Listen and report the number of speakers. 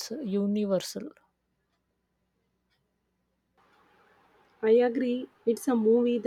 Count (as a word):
two